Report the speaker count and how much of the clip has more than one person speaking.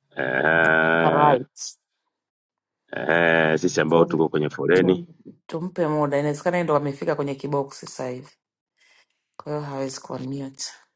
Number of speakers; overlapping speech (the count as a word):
two, about 4%